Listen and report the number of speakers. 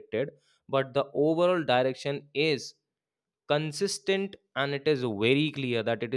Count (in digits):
1